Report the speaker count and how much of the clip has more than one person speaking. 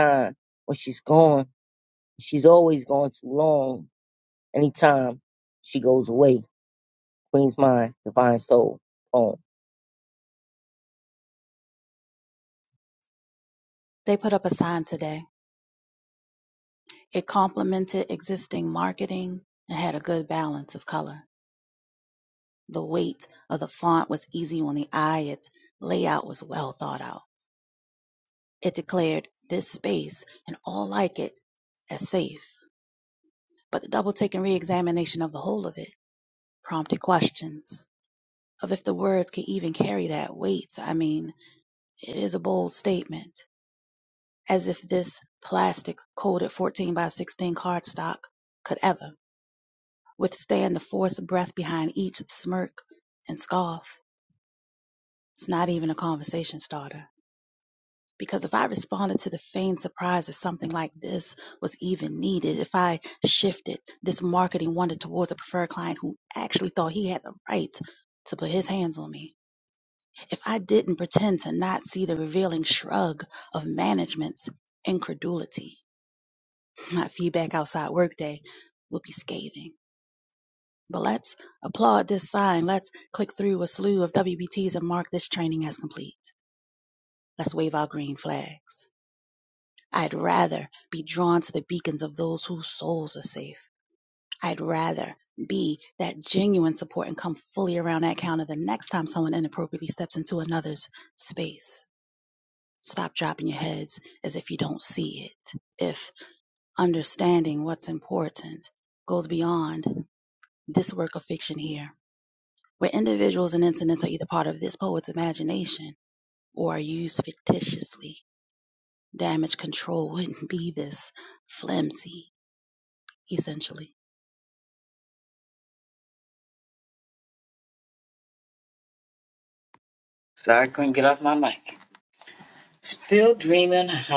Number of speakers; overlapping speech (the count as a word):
three, no overlap